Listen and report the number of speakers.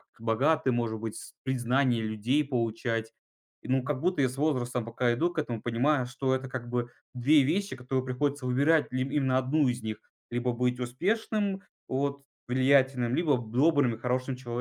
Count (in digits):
1